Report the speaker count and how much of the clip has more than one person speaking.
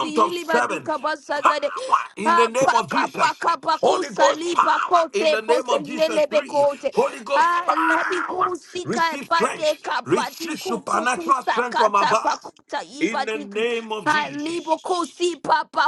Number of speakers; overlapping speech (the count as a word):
two, about 47%